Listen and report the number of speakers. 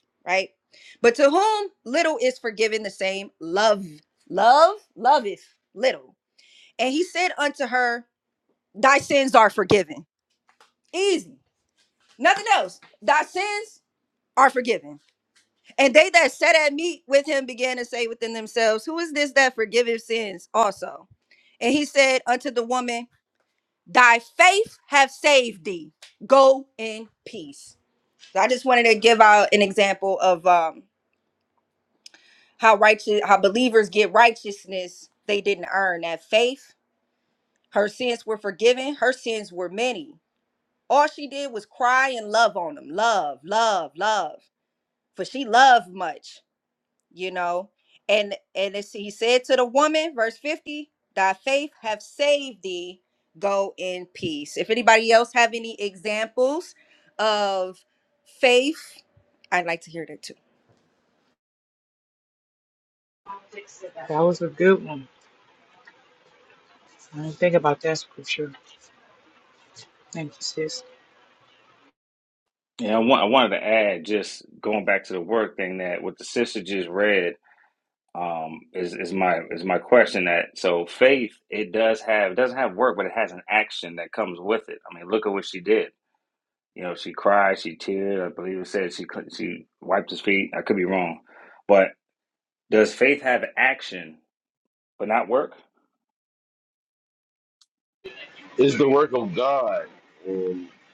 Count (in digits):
4